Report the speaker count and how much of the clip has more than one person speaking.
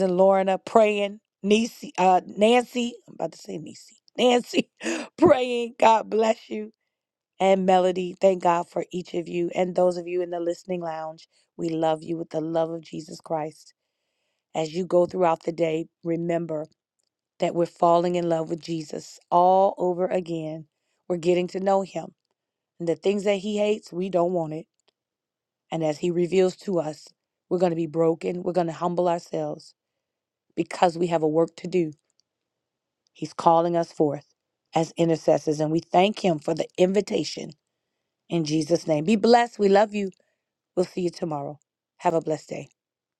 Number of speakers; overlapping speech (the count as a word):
one, no overlap